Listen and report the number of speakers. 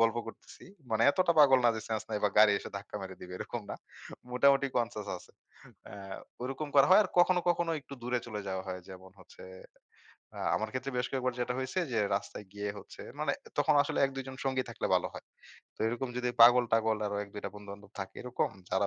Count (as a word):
one